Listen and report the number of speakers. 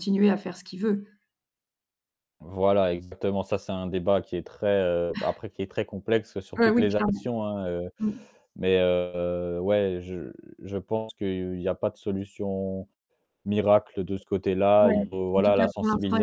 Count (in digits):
2